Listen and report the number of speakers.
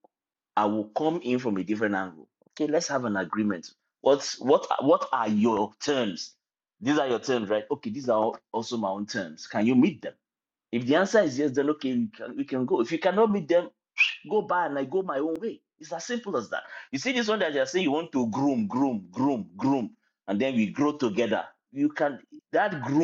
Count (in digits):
1